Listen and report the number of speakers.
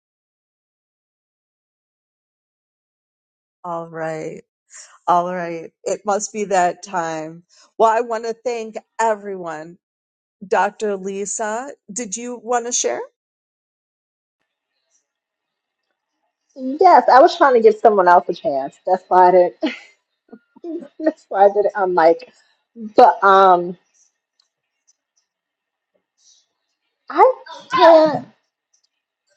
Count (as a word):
two